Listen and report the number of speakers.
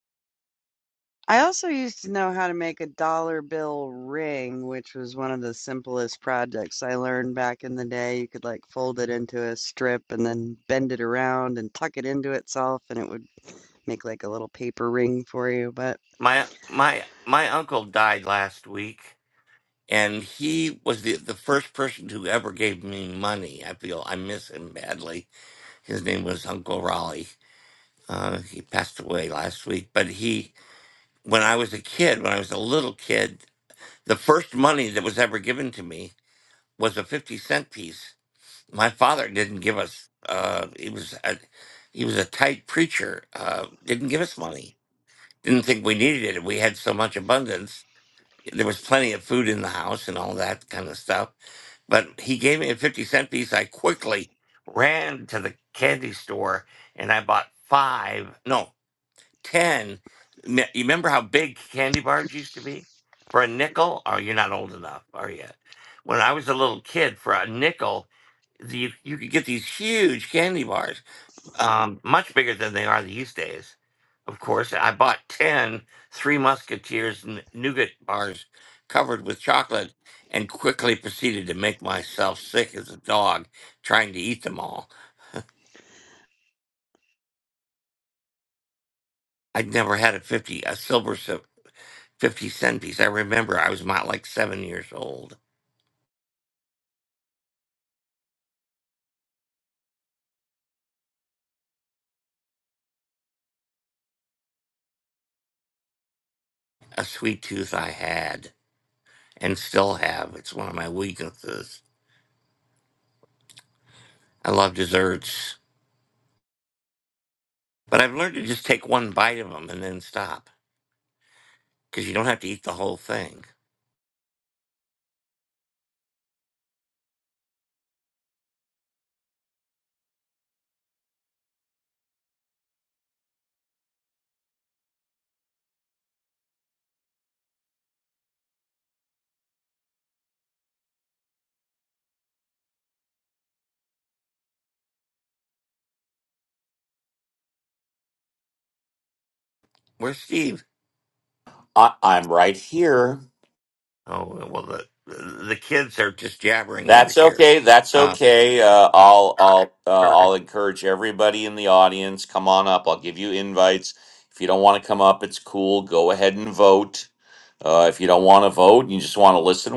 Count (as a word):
three